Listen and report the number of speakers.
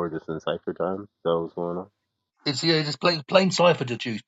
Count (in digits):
2